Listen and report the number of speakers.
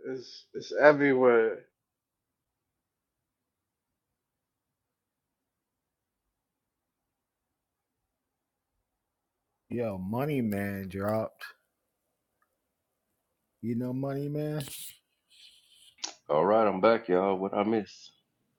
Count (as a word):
three